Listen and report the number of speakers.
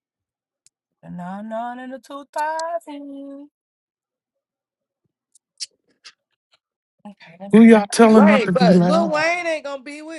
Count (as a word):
three